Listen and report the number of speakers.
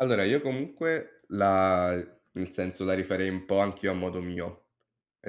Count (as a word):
one